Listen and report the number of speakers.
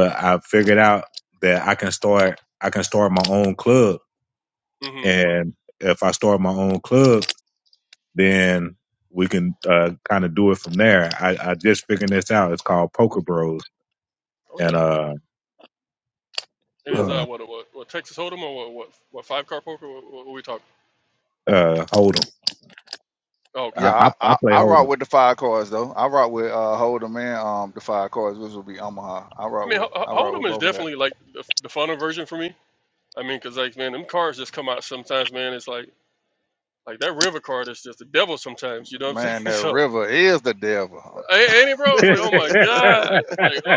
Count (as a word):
three